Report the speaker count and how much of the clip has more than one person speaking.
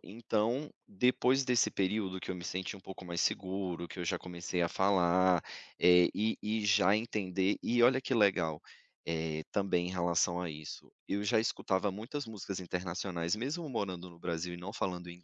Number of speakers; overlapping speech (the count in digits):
1, no overlap